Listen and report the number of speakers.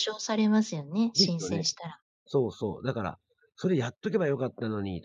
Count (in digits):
2